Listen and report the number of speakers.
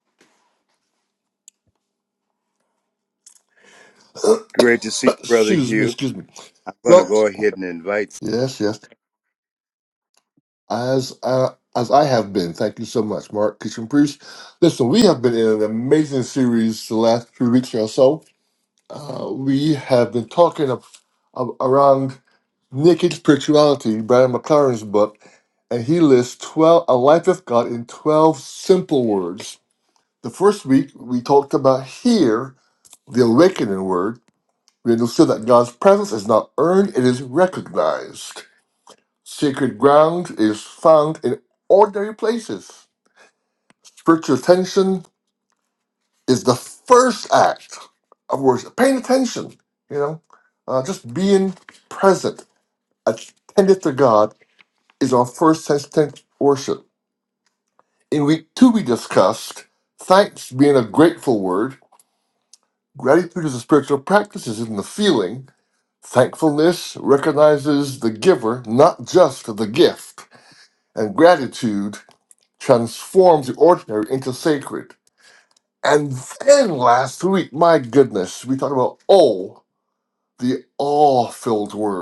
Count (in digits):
2